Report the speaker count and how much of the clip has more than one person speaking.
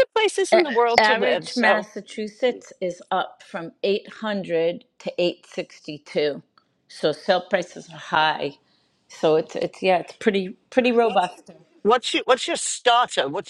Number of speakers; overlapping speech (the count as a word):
three, about 10%